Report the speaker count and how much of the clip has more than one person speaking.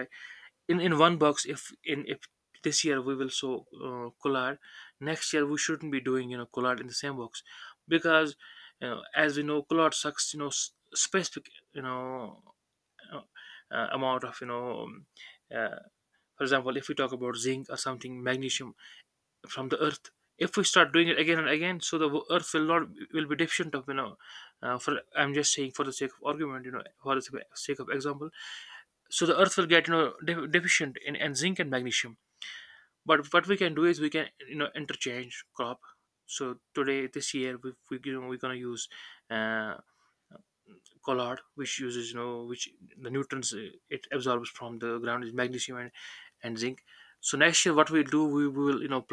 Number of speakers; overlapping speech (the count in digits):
1, no overlap